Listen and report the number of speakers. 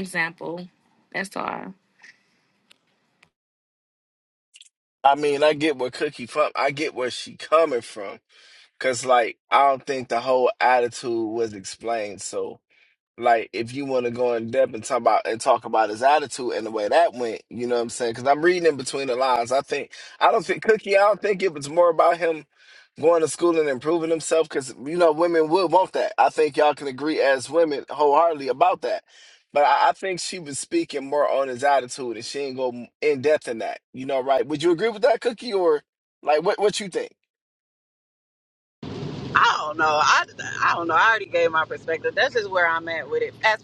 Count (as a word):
three